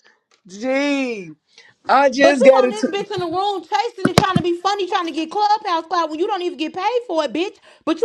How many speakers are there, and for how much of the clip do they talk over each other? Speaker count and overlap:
2, about 9%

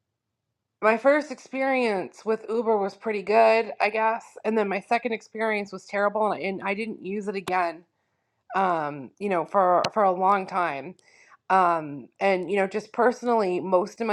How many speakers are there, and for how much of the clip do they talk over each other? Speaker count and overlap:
1, no overlap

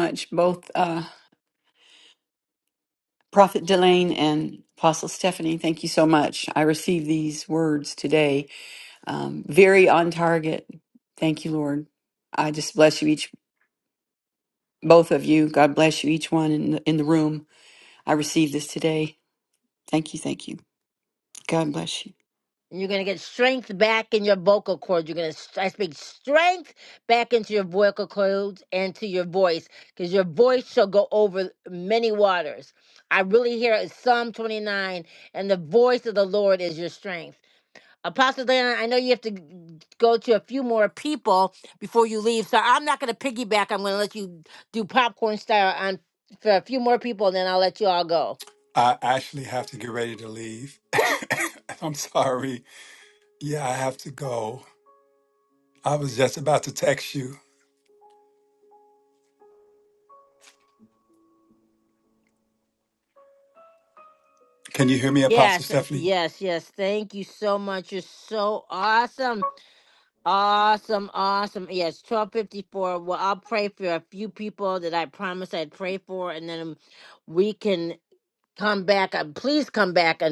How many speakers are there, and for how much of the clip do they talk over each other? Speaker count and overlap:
3, about 1%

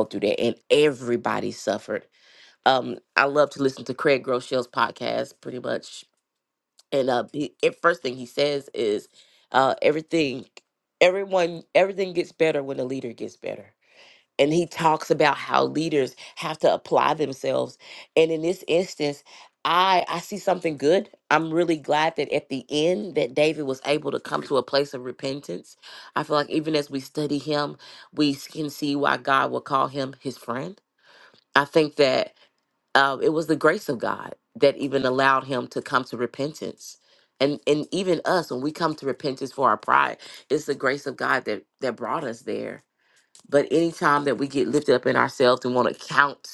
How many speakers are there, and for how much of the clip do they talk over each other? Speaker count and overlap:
1, no overlap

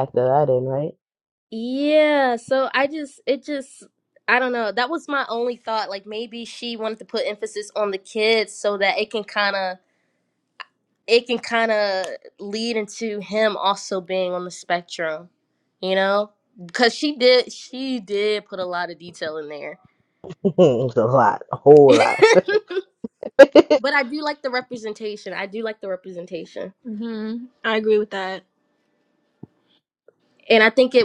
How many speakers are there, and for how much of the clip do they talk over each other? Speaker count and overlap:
3, no overlap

